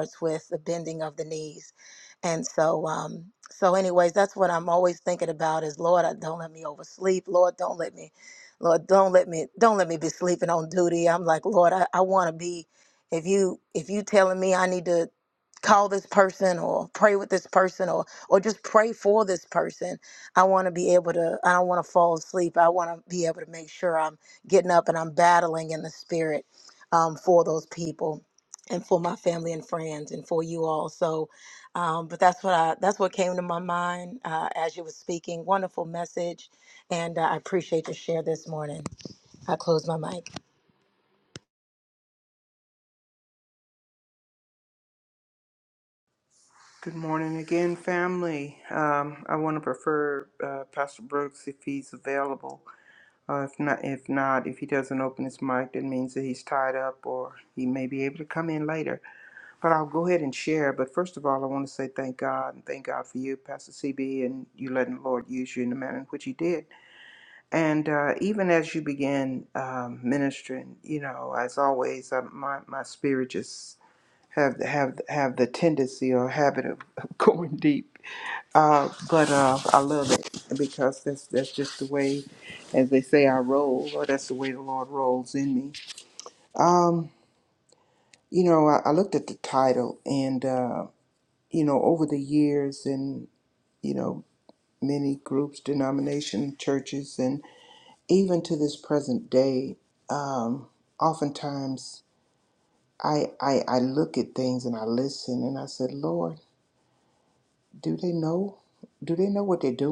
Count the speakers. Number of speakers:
two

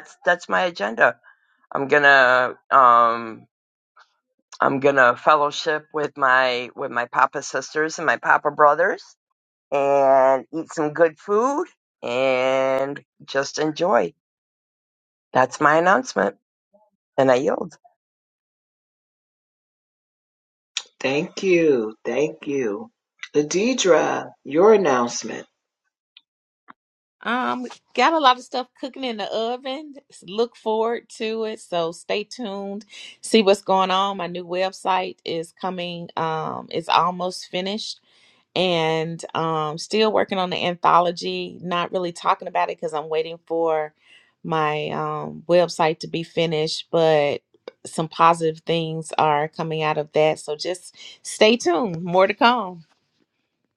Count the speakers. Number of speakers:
three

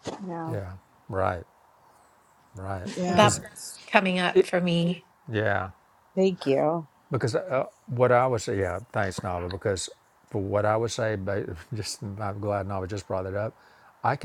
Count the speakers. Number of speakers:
three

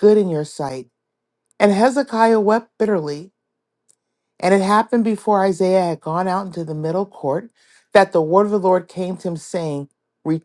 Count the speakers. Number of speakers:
one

